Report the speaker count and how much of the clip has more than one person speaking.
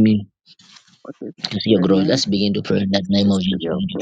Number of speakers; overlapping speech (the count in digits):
2, about 28%